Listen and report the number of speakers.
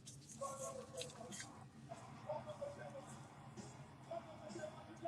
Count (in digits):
0